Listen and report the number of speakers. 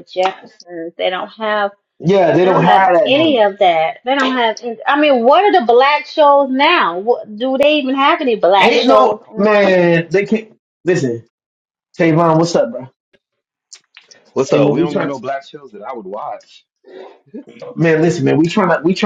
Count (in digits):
3